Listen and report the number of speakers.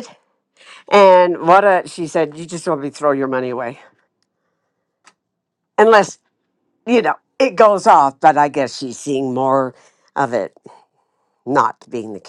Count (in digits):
1